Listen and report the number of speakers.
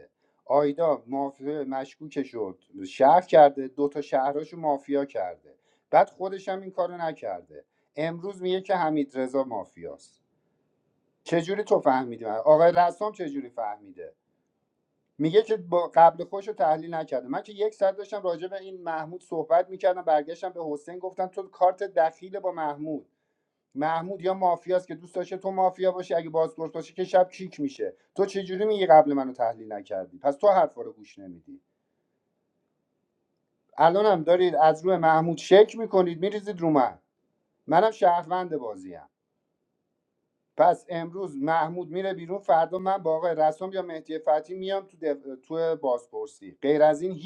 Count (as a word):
one